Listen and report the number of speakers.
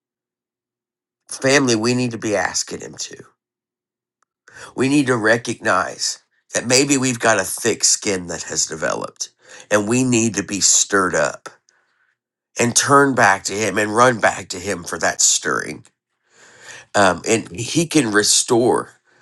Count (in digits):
1